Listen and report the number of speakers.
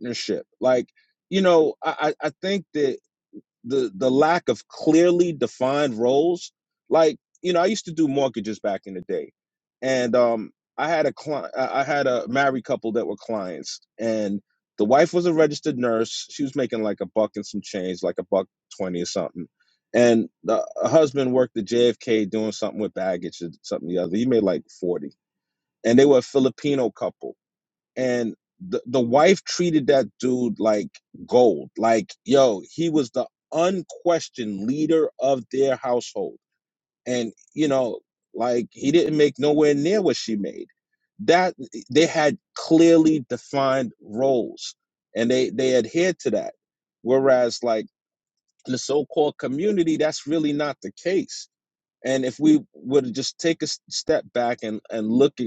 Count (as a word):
one